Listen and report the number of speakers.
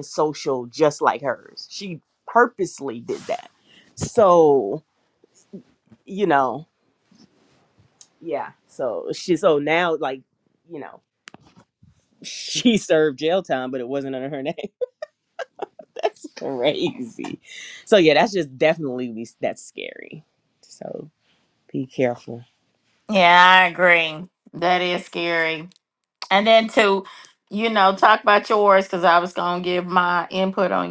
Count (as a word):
two